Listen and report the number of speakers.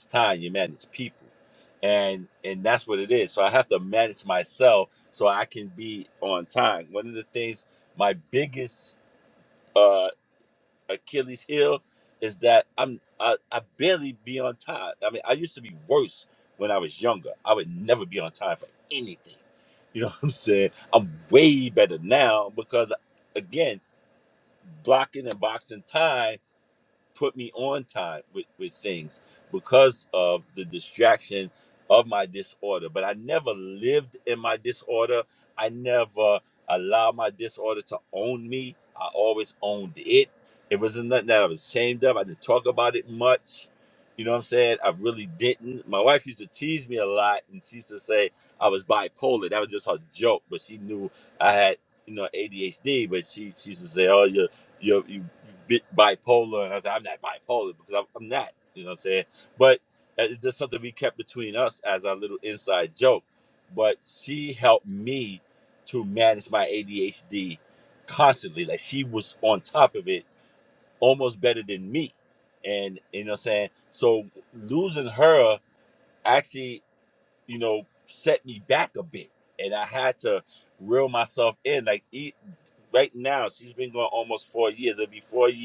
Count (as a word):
one